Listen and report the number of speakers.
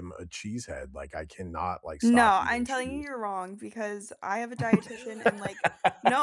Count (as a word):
two